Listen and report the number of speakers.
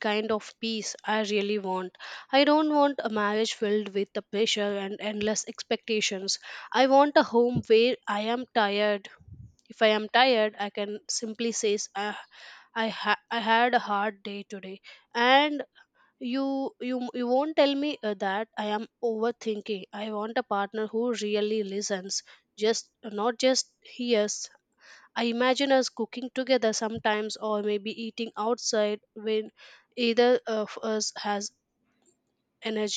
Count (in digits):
1